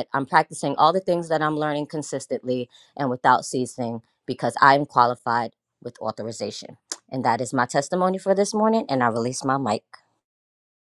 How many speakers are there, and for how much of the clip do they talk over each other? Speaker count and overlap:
one, no overlap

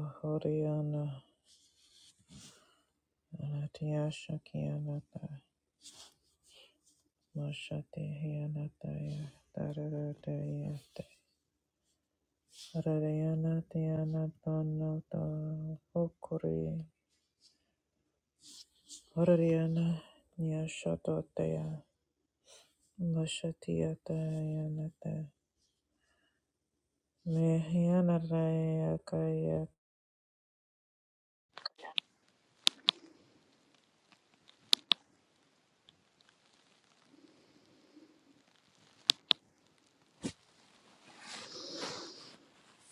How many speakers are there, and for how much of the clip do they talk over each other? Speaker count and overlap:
one, no overlap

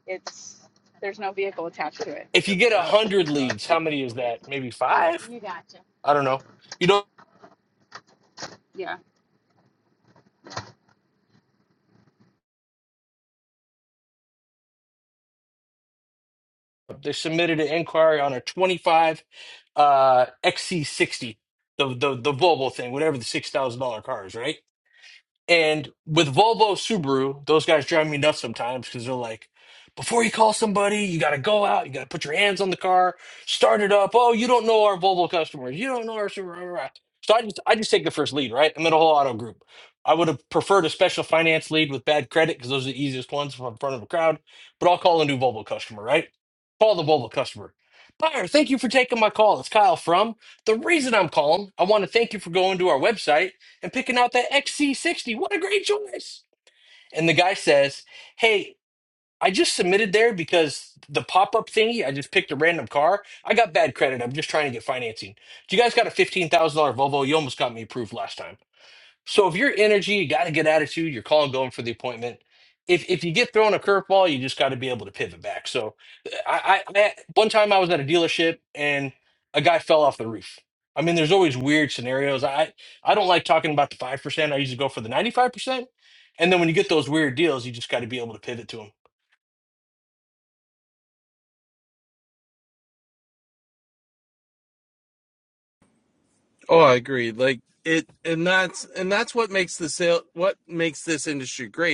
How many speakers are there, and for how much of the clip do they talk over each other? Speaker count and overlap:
three, no overlap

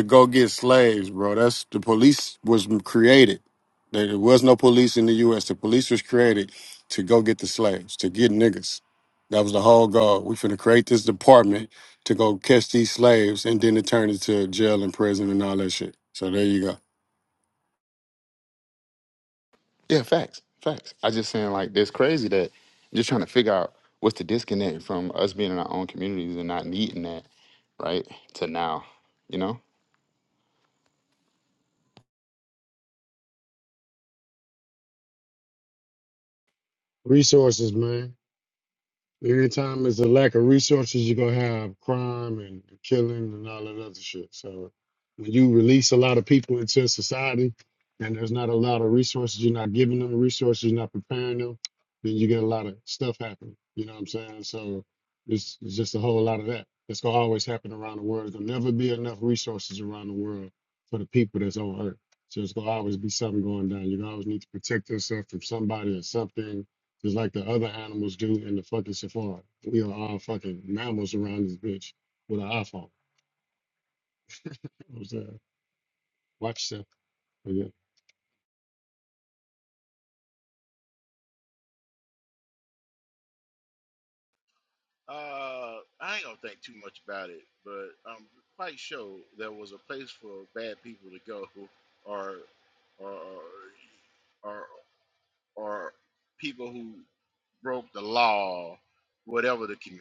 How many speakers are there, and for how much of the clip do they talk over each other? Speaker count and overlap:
three, no overlap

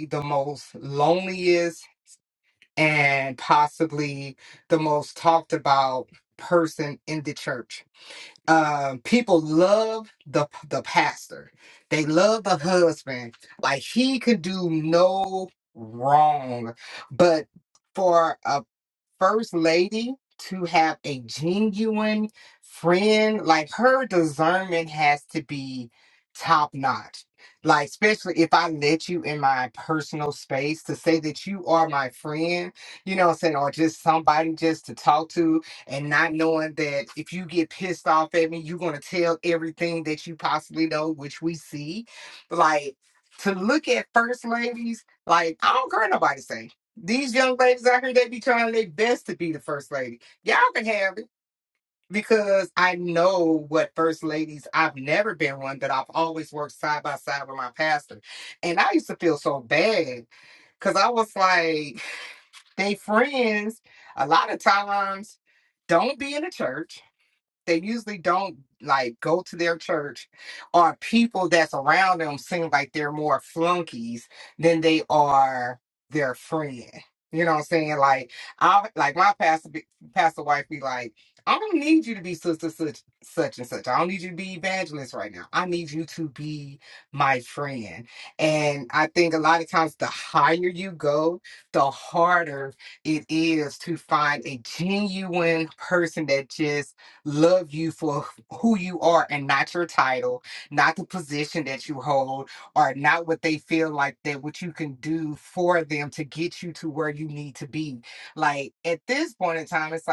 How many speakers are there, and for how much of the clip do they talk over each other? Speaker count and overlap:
one, no overlap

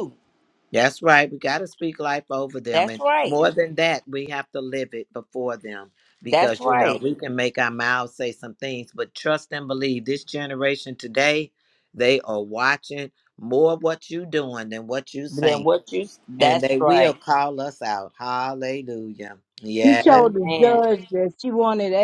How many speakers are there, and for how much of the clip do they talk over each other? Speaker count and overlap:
three, about 16%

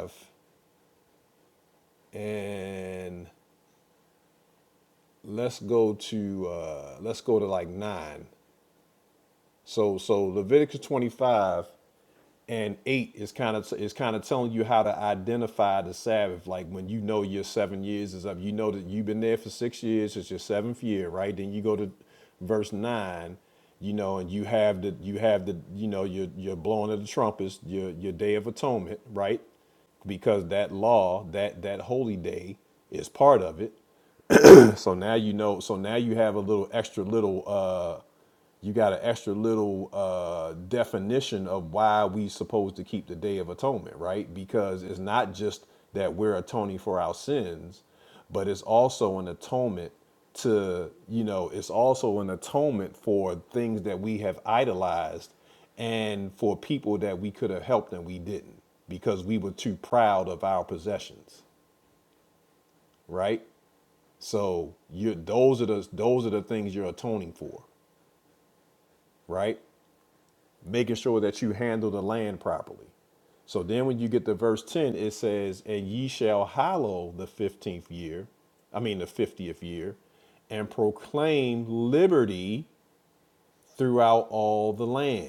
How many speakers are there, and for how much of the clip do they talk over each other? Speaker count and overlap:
one, no overlap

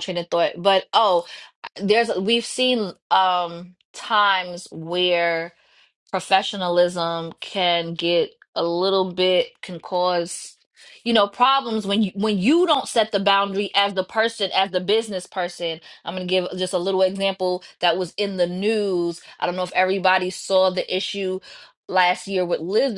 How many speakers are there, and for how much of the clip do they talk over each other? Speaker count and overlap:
one, no overlap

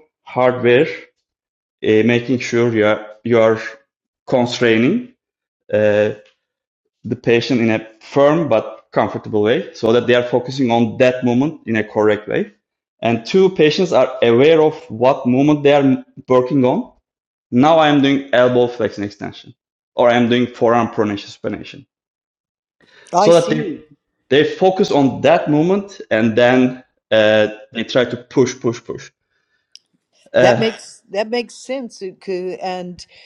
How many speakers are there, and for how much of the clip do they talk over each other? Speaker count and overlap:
two, about 3%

